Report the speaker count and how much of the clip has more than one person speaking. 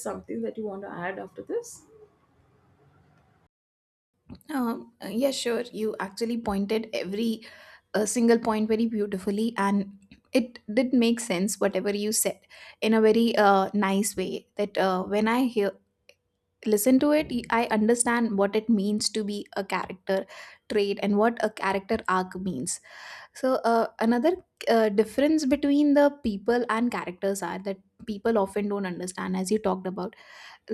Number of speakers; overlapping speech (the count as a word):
two, no overlap